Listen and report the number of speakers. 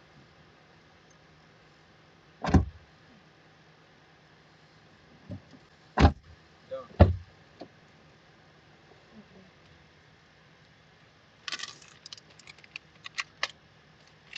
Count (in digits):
0